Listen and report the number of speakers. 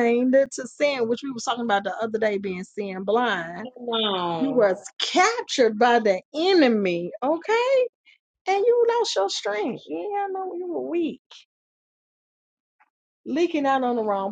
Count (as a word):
two